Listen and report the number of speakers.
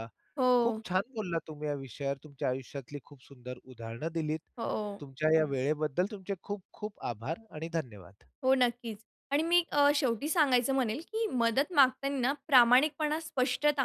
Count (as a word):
two